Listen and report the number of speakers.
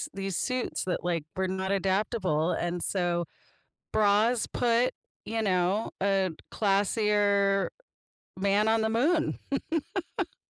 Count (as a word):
one